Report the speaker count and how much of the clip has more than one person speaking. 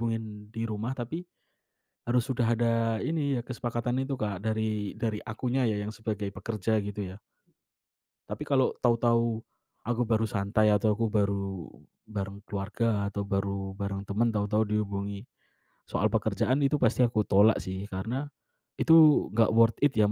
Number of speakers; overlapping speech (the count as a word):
one, no overlap